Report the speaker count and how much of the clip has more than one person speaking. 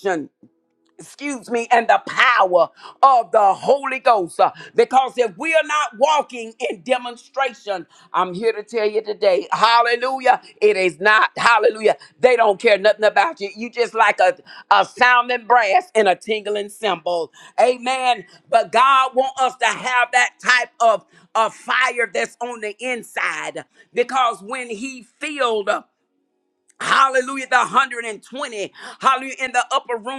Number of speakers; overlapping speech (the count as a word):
one, no overlap